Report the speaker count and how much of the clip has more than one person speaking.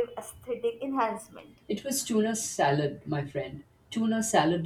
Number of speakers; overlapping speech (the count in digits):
2, no overlap